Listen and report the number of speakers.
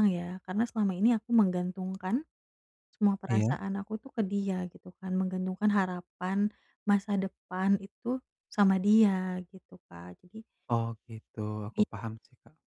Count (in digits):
2